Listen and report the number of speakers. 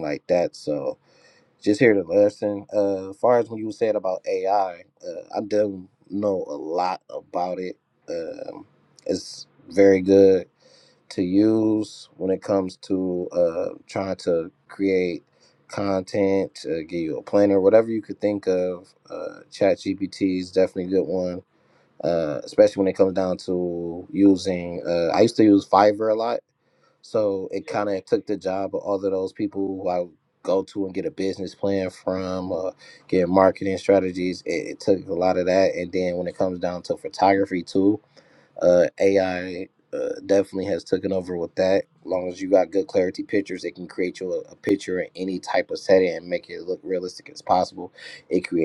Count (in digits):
1